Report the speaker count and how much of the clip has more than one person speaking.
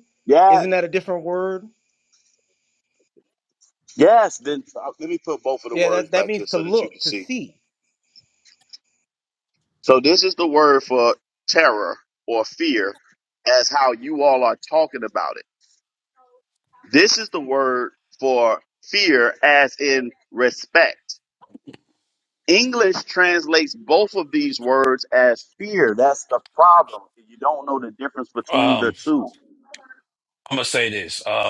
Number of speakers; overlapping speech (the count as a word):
three, about 6%